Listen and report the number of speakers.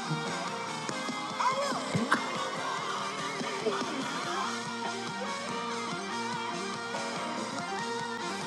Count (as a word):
zero